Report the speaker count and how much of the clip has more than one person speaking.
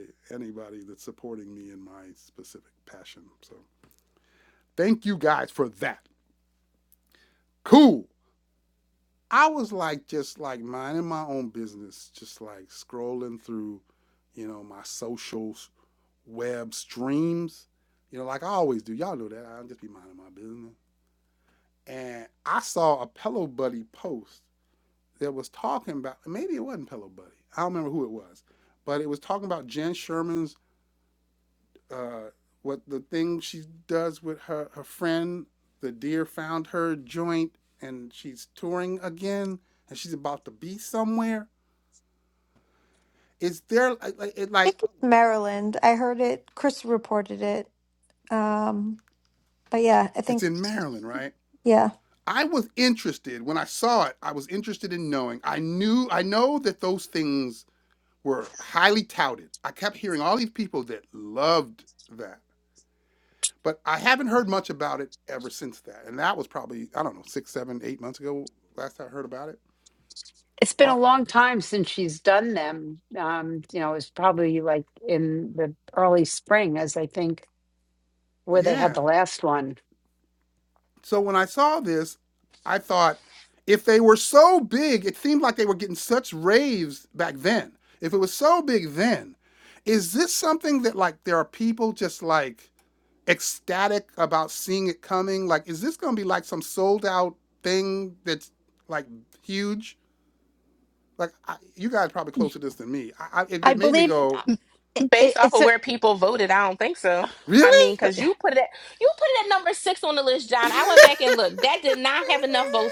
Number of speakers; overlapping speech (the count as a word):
four, about 2%